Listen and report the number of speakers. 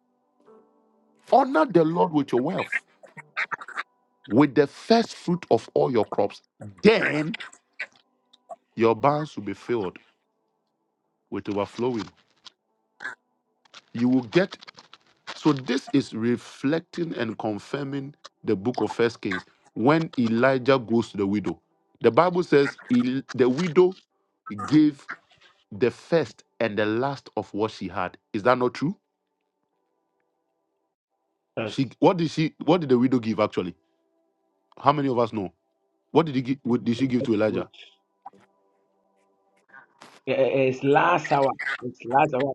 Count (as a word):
two